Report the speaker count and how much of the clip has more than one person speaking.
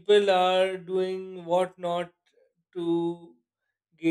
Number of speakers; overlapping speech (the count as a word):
one, no overlap